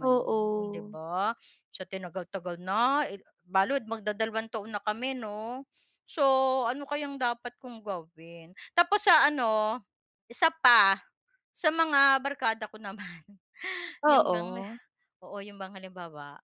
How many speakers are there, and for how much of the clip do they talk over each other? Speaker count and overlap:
two, about 6%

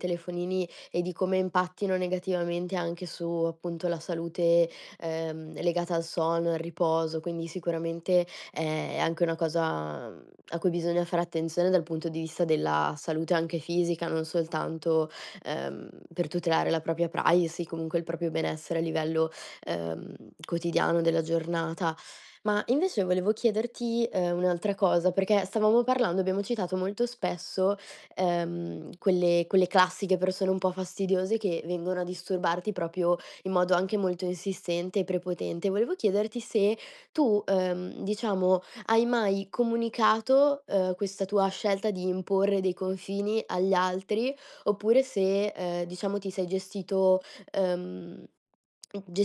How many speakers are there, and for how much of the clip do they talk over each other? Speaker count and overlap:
one, no overlap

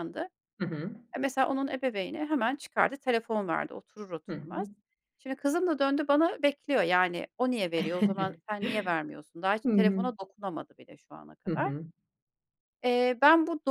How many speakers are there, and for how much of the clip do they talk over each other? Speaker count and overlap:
two, about 8%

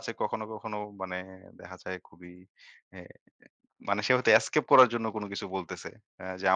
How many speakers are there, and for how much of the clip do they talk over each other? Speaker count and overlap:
one, no overlap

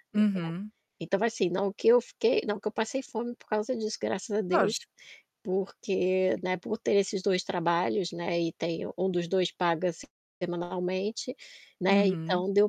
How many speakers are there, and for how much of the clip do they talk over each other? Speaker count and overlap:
two, about 6%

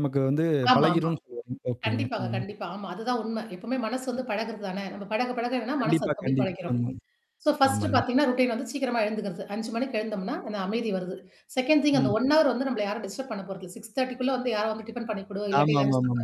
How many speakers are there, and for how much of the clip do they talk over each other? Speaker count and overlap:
two, about 21%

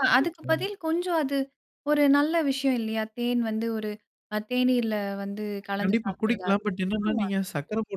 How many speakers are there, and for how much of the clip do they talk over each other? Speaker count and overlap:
two, about 22%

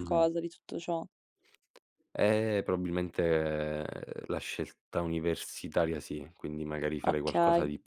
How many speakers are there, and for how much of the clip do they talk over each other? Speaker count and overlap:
two, about 11%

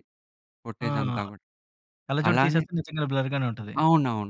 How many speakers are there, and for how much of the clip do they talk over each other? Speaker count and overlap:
two, about 13%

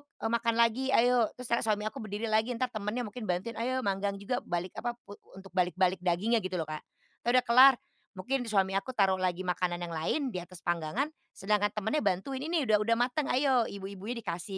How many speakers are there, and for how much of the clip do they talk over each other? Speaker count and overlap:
one, no overlap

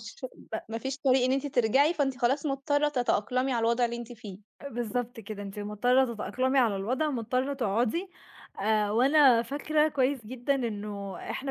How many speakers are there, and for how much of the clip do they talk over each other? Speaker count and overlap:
two, no overlap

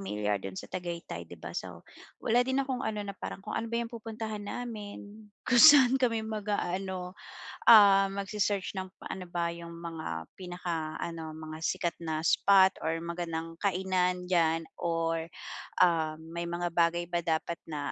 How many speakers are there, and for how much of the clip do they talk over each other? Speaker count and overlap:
one, no overlap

